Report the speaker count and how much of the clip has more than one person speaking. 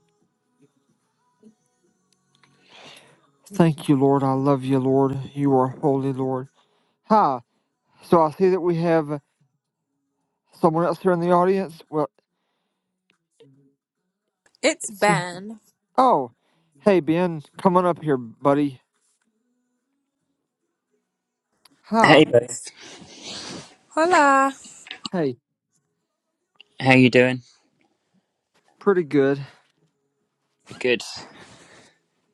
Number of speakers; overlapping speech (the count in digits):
3, about 2%